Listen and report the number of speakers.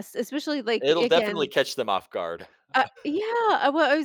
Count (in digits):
2